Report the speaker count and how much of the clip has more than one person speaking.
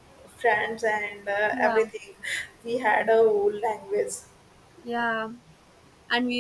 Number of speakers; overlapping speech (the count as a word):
two, about 5%